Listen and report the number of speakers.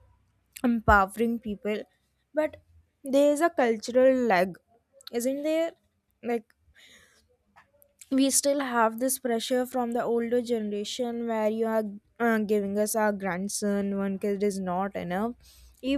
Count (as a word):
one